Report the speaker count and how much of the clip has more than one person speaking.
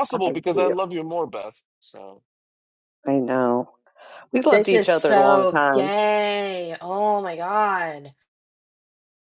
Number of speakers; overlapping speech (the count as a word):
three, about 21%